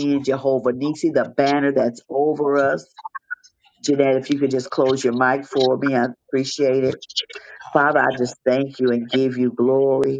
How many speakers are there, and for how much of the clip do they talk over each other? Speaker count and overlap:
one, no overlap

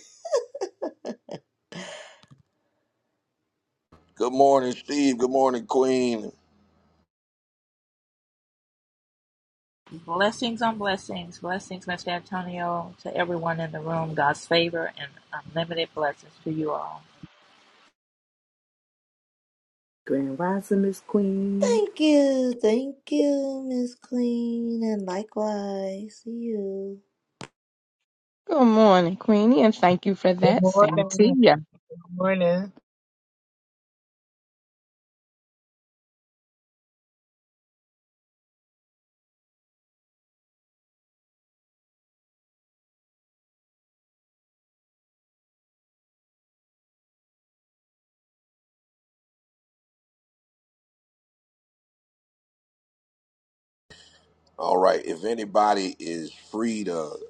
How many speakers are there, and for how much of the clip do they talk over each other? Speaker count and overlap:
six, about 2%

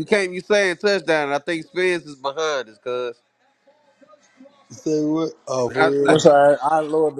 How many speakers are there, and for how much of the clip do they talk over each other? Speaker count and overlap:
three, about 8%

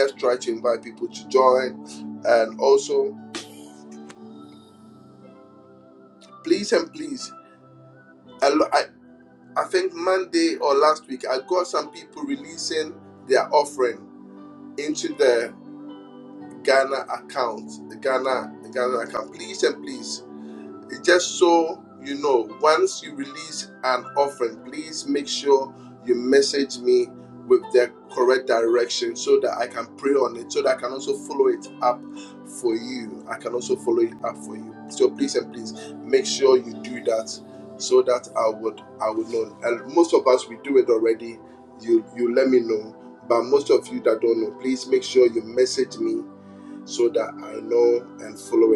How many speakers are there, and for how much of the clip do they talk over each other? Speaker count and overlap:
one, no overlap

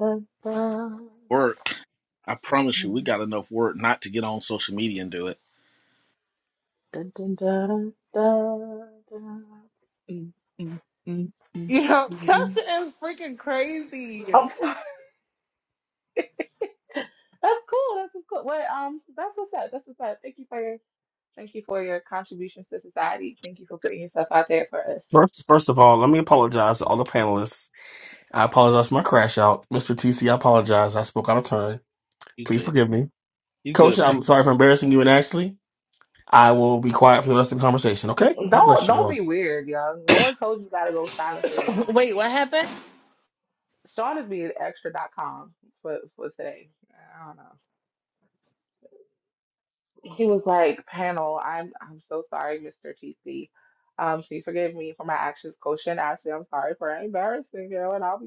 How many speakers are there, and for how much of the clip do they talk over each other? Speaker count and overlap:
four, about 3%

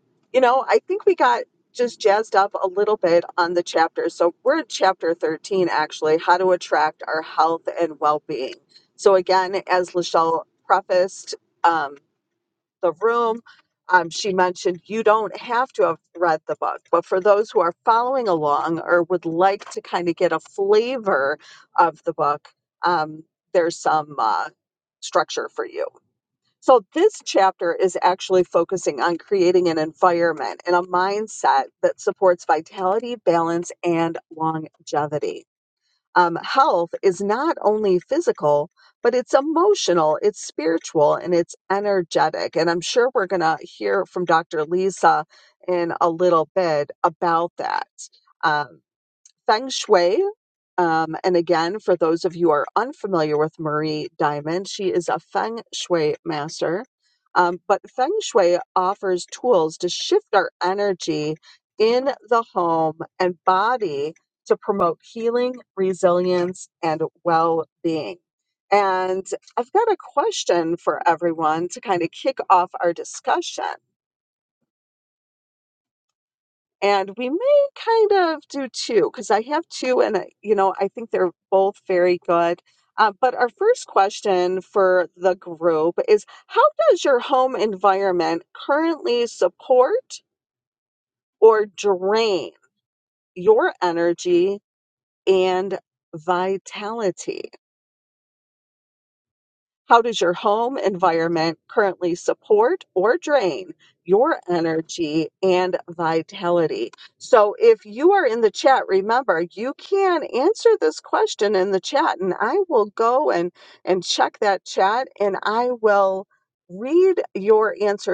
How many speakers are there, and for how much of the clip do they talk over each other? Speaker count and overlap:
one, no overlap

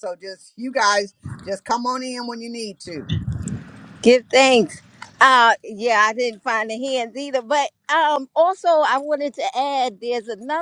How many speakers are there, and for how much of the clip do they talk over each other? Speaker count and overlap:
two, no overlap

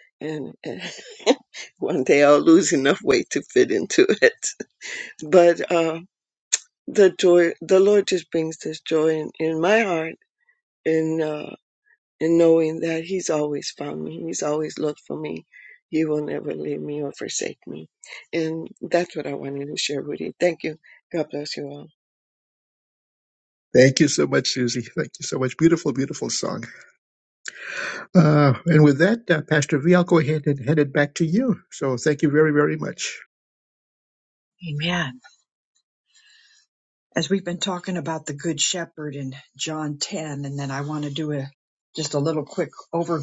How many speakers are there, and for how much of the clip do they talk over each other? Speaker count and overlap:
three, no overlap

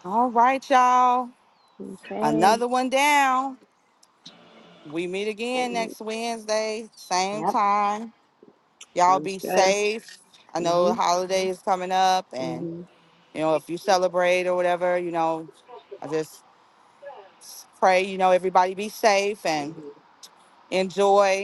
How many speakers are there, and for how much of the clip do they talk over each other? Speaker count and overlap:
two, about 12%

